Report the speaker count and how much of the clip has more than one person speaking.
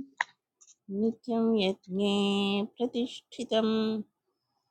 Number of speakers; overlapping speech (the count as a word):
one, no overlap